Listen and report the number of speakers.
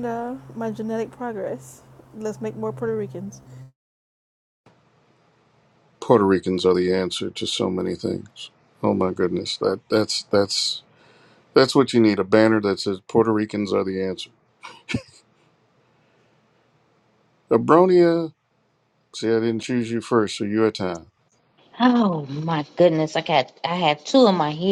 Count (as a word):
three